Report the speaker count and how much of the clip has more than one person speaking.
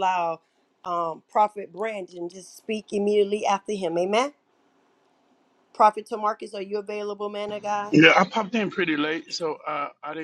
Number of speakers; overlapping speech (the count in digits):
2, about 1%